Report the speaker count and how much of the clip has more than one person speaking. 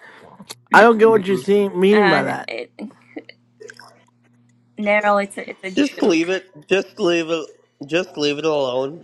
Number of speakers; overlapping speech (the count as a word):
three, about 17%